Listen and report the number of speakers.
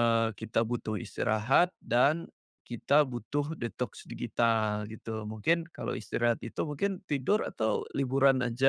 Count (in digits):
1